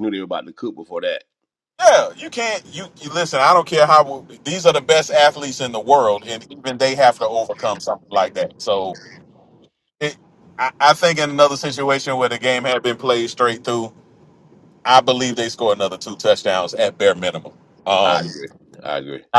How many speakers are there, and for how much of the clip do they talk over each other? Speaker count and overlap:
2, about 1%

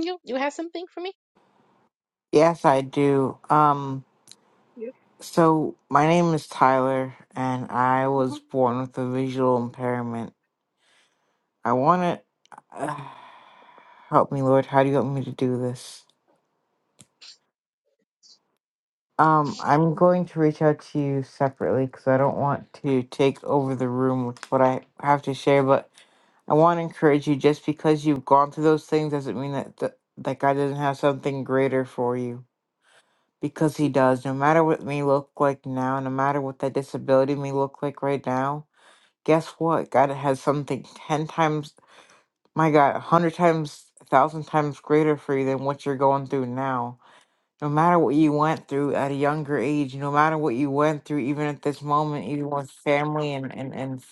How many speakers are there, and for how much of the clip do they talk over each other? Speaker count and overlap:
2, under 1%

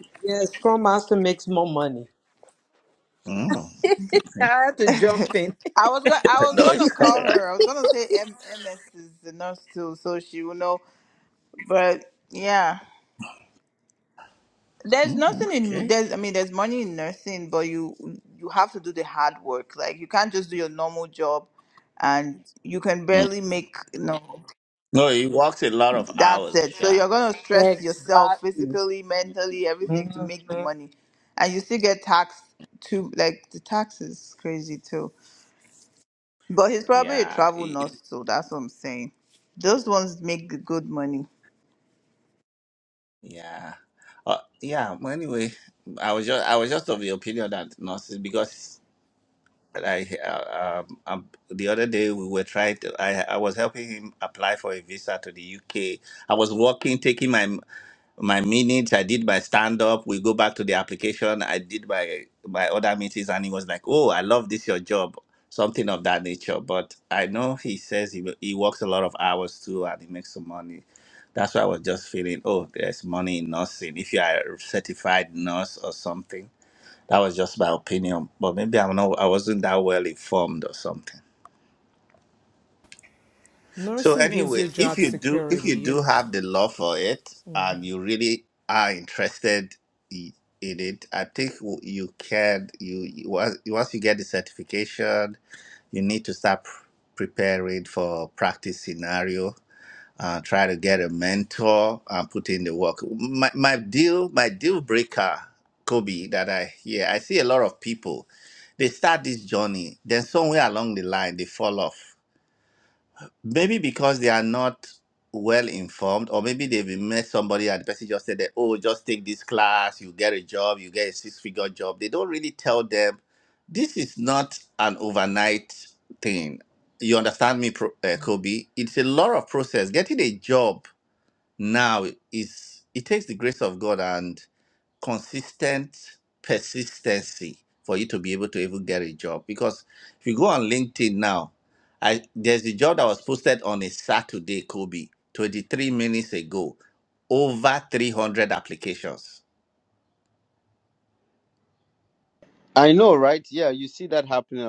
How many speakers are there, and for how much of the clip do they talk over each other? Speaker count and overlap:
4, about 5%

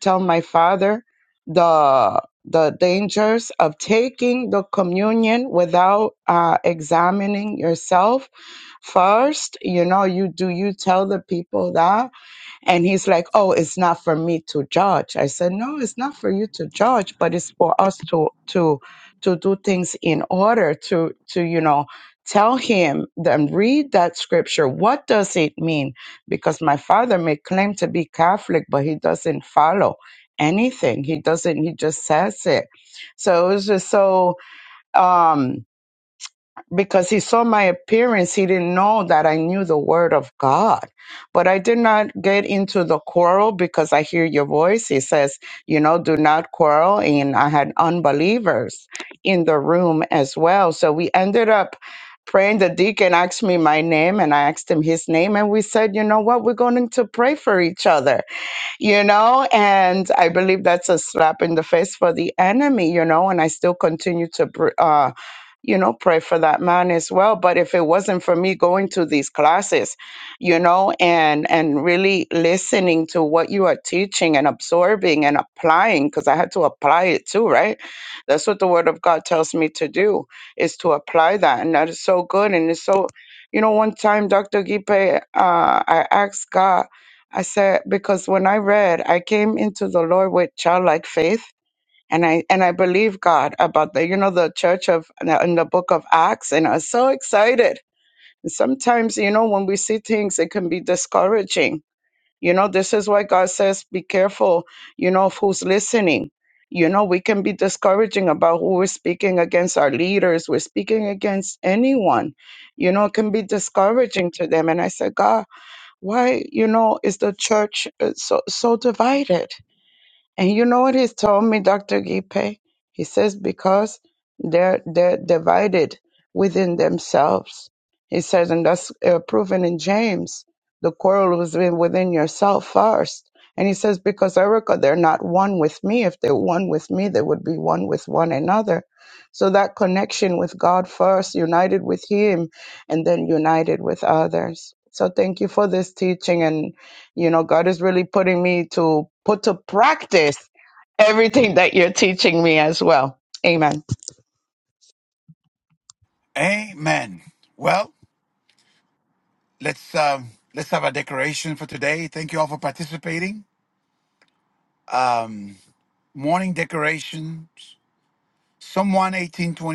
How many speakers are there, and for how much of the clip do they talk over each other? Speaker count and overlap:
2, no overlap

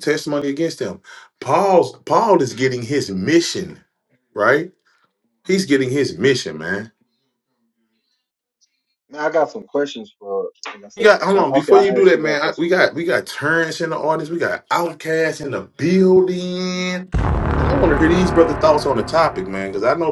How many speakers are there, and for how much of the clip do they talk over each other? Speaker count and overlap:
2, about 10%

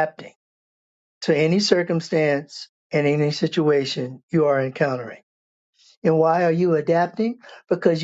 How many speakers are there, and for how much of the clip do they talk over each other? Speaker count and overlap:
1, no overlap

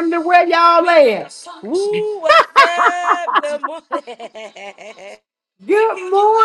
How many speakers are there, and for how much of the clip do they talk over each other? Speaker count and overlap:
2, no overlap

